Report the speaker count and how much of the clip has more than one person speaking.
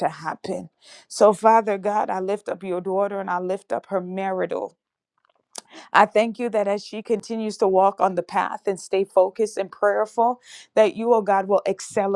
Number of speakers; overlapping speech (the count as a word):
one, no overlap